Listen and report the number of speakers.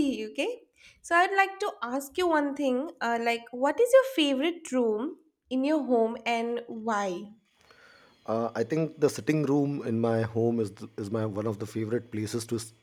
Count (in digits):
2